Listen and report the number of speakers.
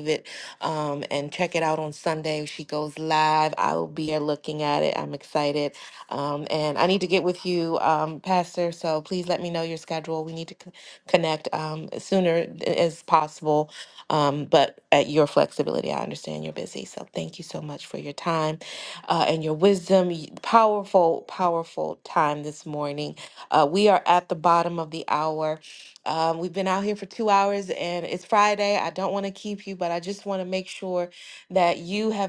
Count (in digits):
1